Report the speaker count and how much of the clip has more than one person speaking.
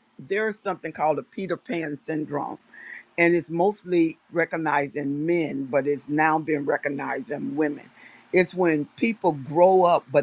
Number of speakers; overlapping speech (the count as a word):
one, no overlap